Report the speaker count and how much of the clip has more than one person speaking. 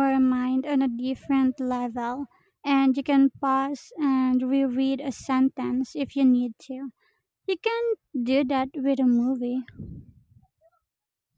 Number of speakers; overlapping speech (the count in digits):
1, no overlap